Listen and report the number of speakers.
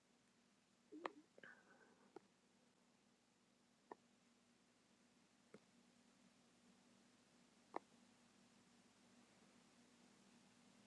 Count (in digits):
0